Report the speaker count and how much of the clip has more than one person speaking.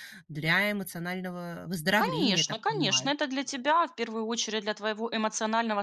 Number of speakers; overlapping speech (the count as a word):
two, about 20%